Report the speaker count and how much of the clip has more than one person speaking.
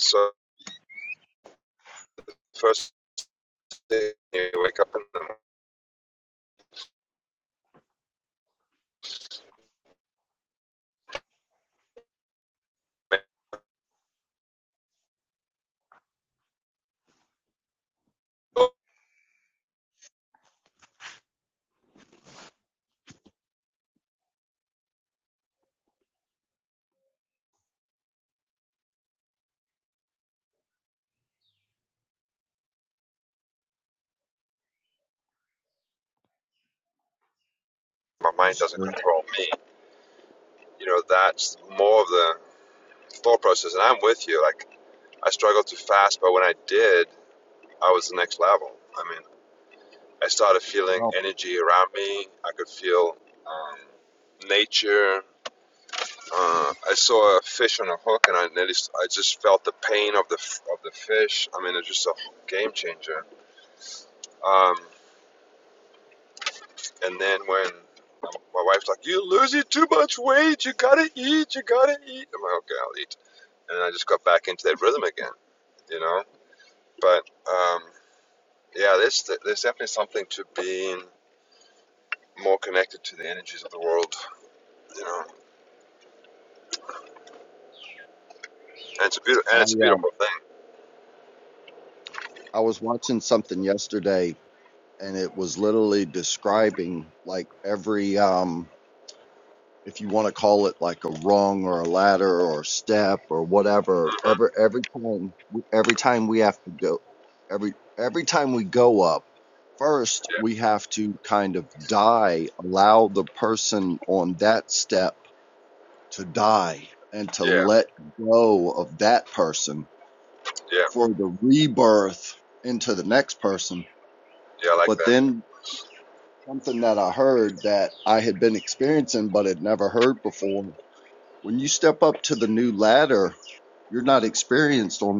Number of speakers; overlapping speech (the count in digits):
2, about 1%